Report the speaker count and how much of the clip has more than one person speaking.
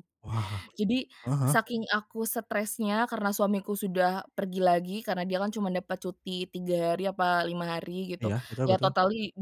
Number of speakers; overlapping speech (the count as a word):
two, about 9%